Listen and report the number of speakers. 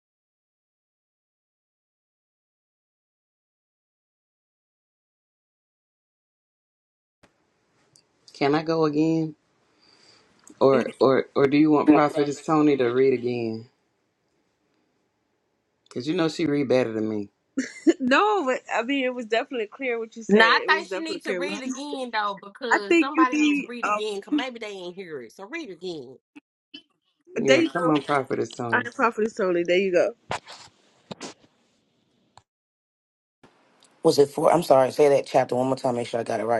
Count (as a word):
four